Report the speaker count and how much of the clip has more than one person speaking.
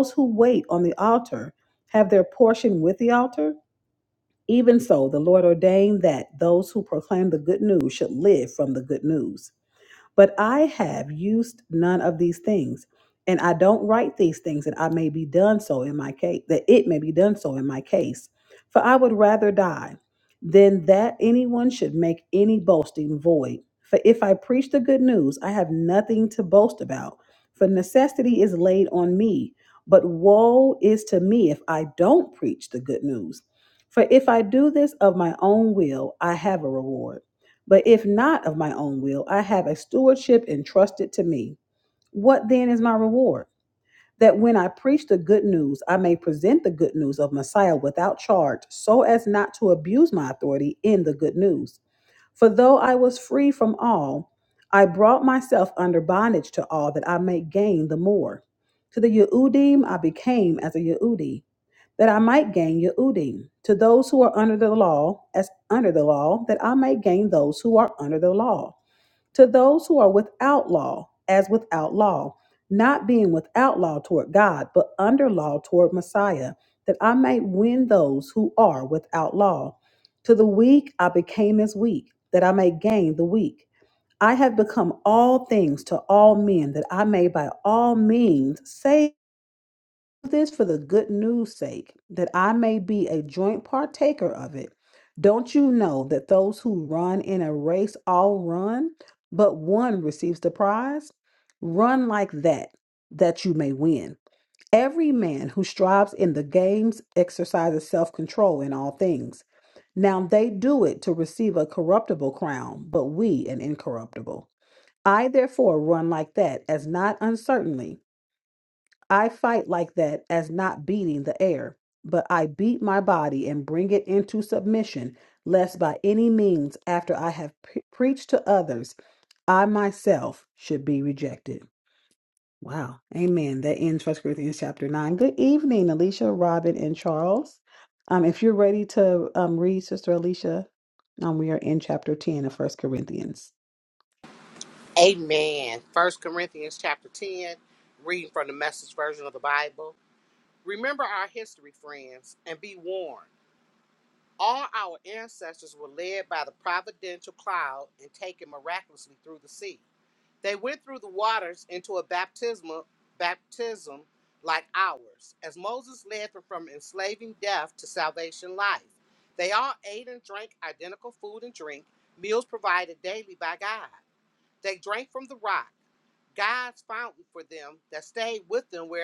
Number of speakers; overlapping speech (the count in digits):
2, no overlap